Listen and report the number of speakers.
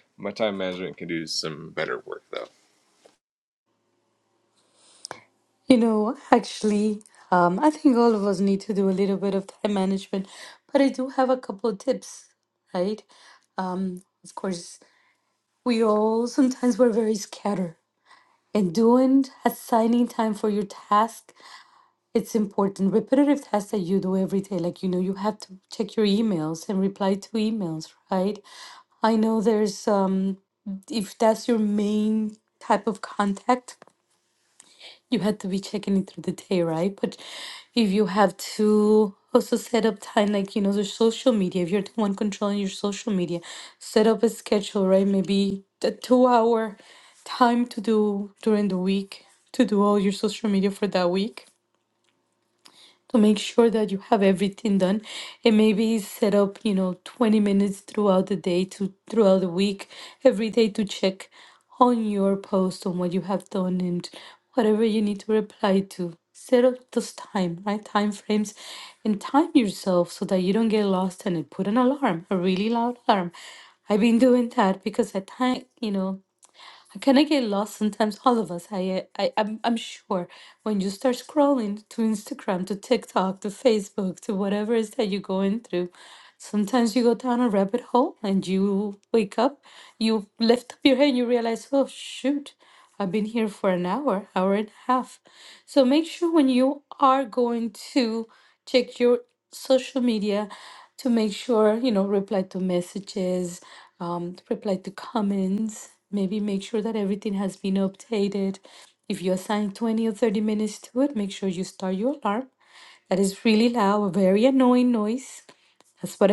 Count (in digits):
2